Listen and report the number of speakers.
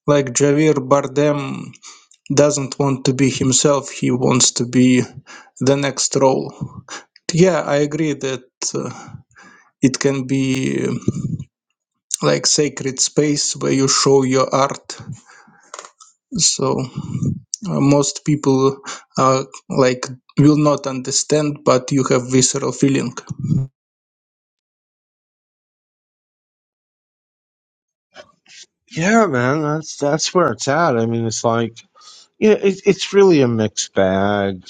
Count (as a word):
two